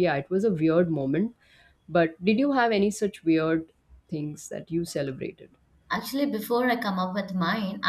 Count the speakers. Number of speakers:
two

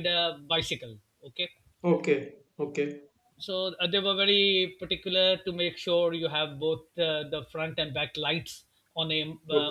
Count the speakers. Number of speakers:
two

